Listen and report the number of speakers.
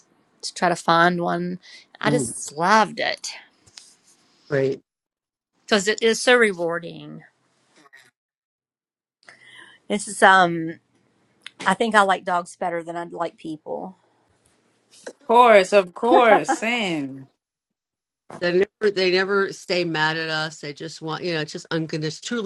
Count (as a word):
three